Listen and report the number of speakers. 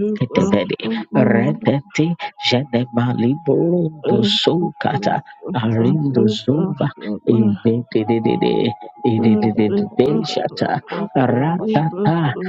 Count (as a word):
two